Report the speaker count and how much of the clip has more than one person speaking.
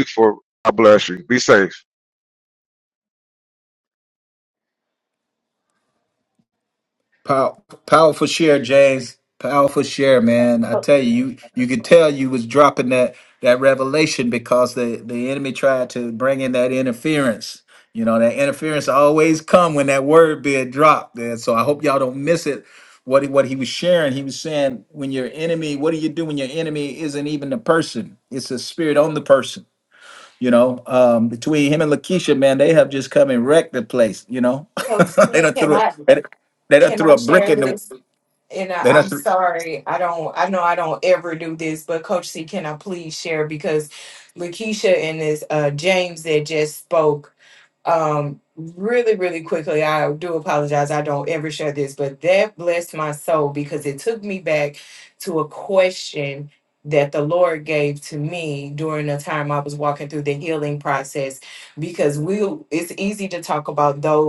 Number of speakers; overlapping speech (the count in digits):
3, about 3%